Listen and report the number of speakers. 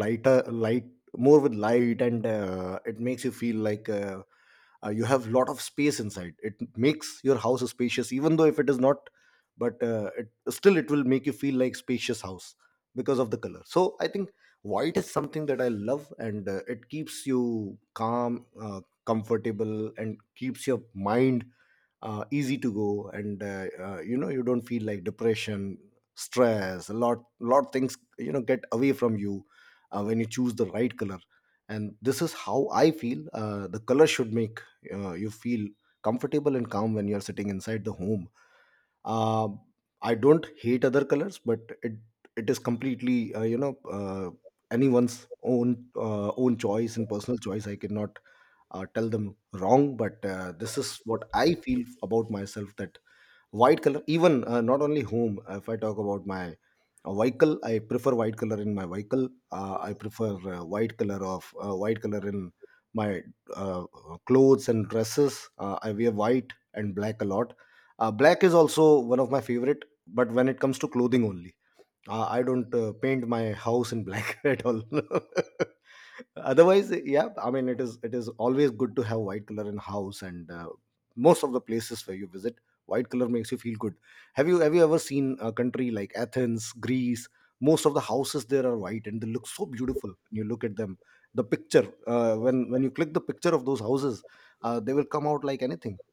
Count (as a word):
one